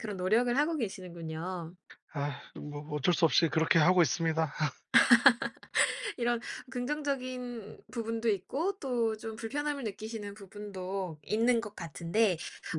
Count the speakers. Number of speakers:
two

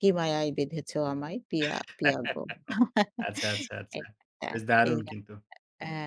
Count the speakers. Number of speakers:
two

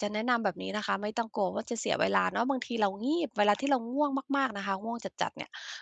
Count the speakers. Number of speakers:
one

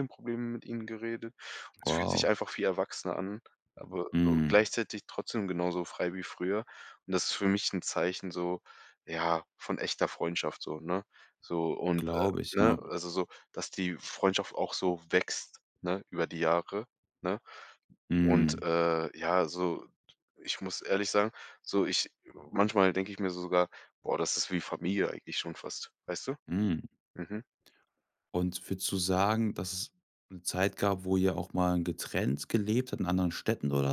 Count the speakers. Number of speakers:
two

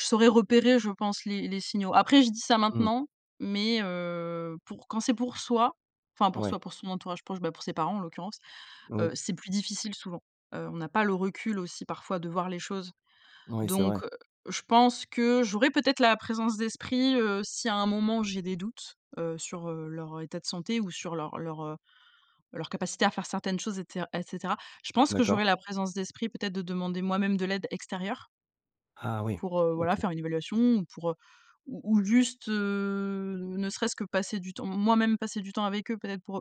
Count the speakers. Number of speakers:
two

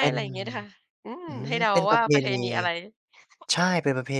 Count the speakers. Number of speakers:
two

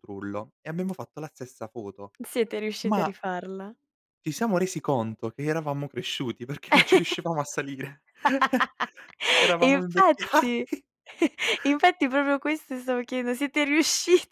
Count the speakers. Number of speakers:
two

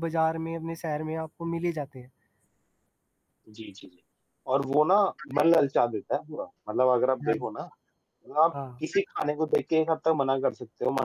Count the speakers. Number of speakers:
two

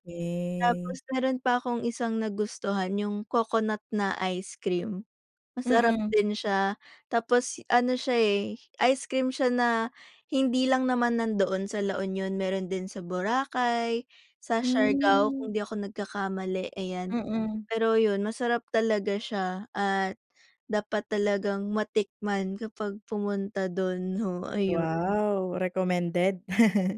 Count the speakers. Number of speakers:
two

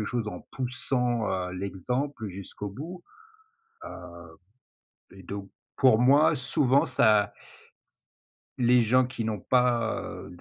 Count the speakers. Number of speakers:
one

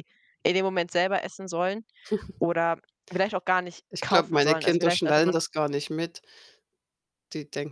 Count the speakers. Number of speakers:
two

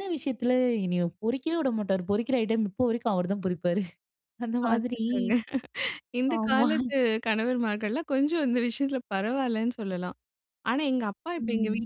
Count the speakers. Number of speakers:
two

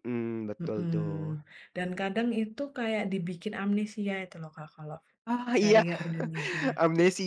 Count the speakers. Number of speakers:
two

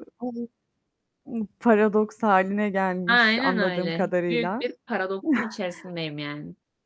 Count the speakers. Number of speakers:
two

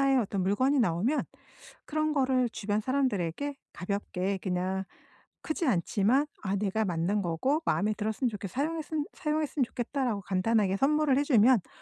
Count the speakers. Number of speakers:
one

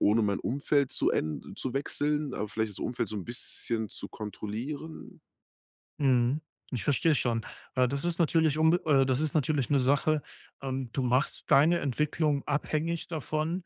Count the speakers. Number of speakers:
two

